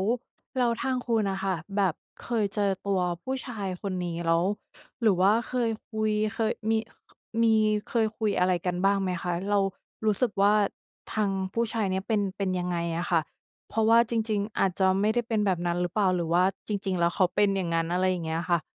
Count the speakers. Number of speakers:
1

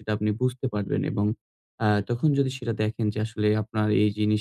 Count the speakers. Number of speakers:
1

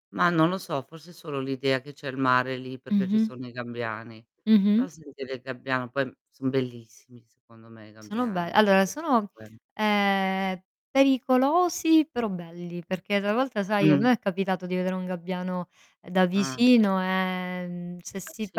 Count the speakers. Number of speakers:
2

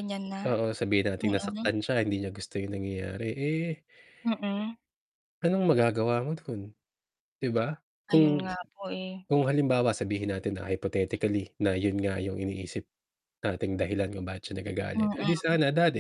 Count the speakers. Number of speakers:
2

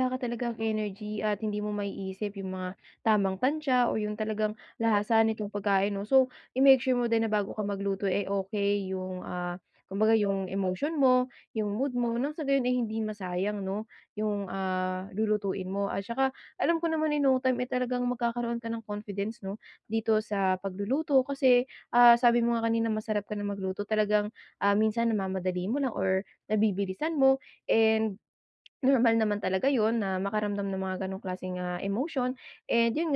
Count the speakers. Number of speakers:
1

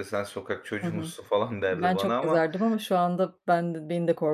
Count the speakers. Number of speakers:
2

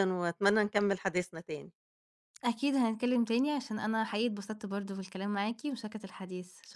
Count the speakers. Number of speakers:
2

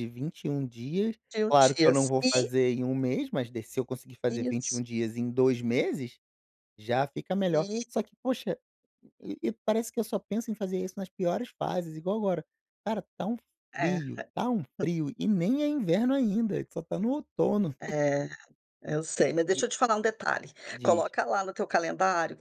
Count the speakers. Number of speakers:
2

